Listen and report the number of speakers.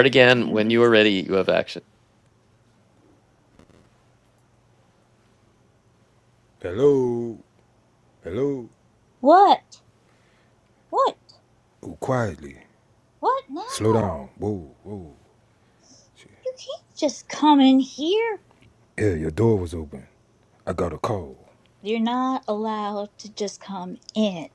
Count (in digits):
3